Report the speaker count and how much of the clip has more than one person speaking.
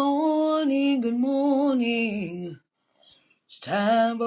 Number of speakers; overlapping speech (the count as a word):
one, no overlap